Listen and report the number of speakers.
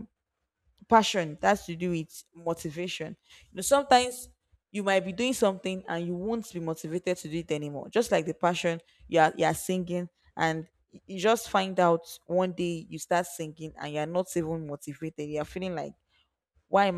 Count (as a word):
one